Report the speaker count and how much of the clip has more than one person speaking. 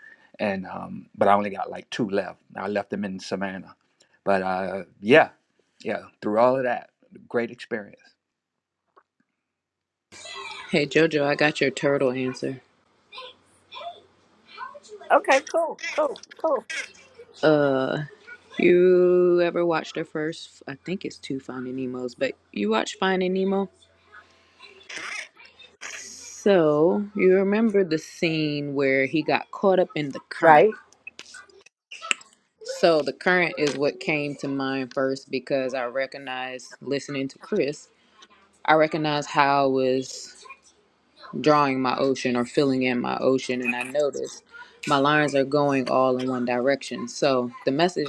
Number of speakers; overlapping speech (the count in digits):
3, about 1%